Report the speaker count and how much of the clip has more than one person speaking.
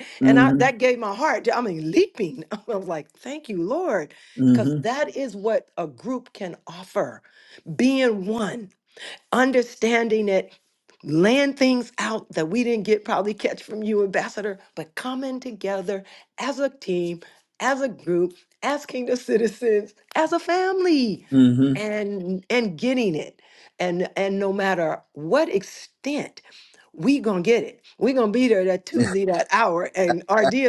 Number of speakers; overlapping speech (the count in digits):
2, about 2%